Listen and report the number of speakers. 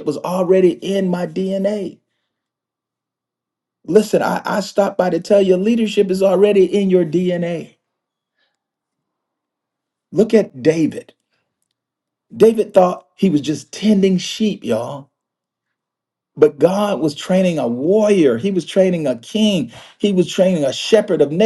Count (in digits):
1